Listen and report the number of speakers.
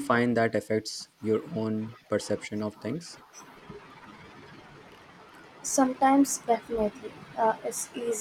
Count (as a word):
two